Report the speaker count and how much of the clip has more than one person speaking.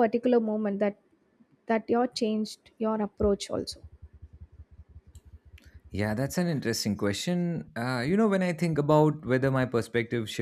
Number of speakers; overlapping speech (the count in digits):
2, no overlap